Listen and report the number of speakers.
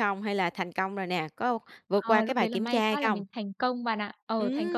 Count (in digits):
2